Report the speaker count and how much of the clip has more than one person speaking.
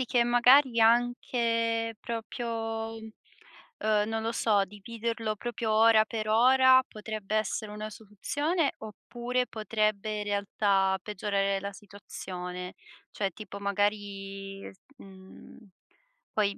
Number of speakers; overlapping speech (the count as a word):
one, no overlap